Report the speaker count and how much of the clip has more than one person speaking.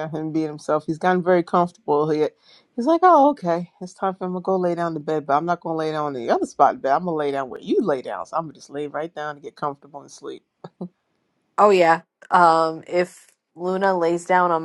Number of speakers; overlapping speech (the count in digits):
2, no overlap